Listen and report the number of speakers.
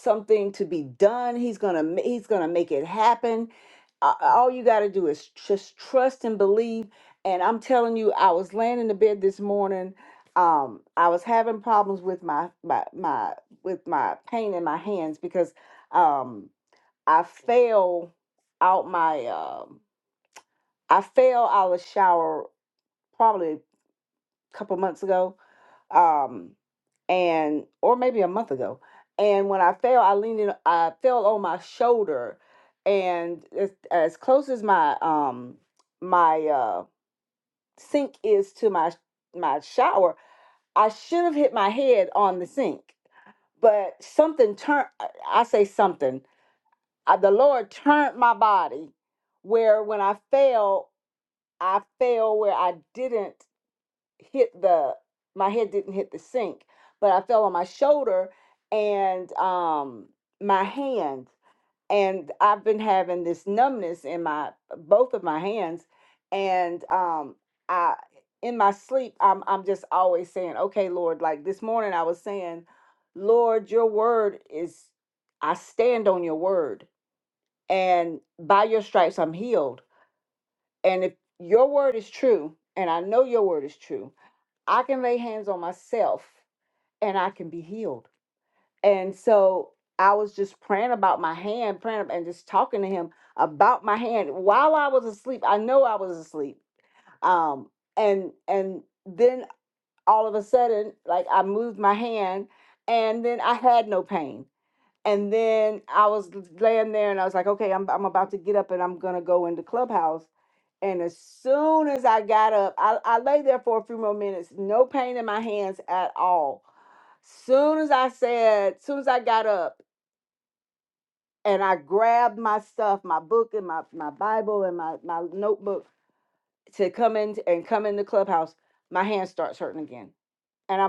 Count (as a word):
one